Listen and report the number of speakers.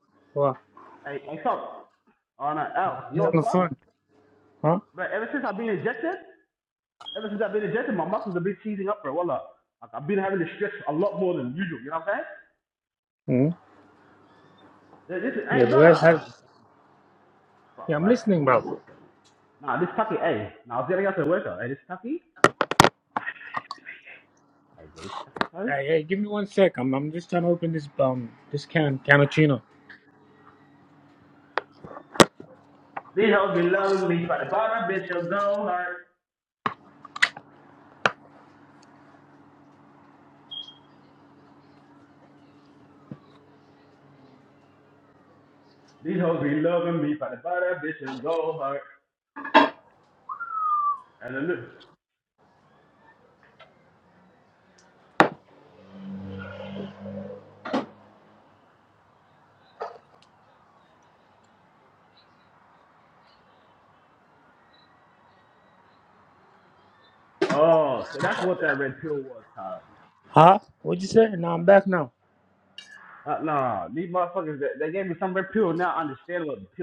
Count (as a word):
two